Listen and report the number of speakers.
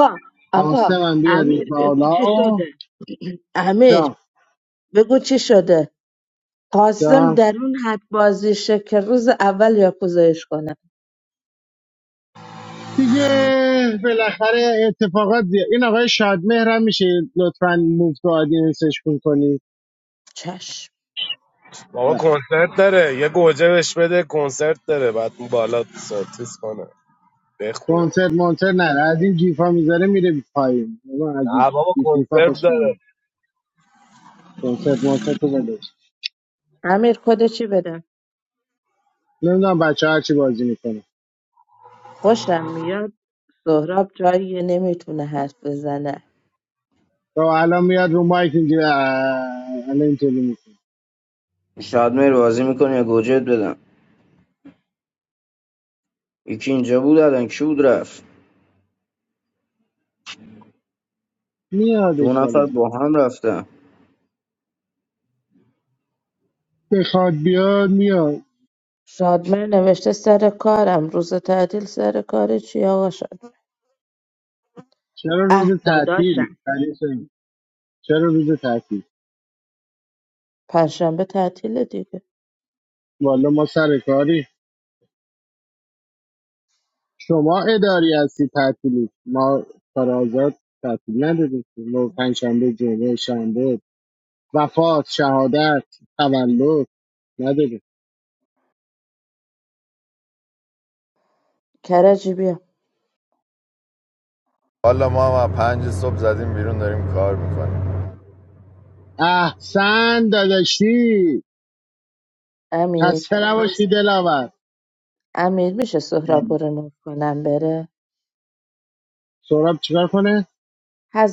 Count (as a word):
five